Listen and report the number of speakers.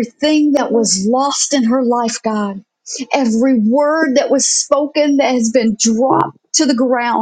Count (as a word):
one